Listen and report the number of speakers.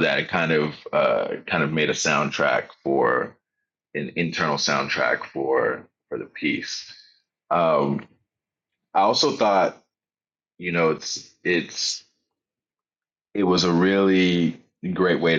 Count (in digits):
1